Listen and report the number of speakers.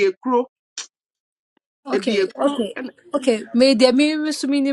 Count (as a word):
two